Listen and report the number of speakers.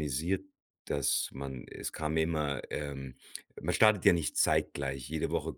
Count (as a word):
one